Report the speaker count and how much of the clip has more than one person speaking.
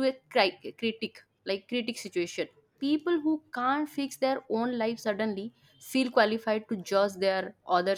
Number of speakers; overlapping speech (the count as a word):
one, no overlap